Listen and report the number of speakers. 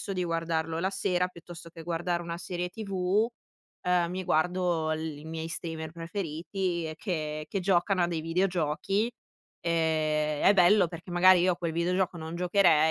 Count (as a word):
one